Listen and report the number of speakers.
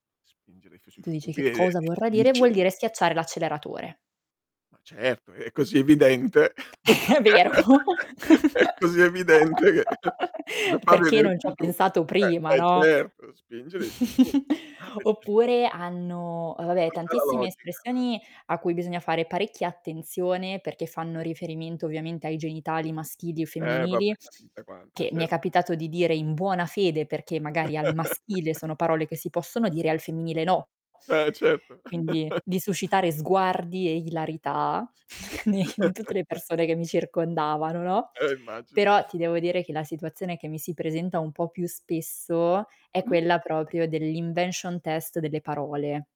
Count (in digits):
2